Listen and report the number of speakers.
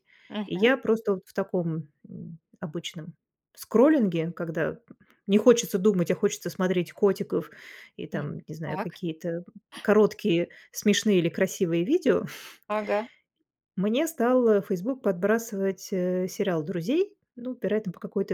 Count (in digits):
2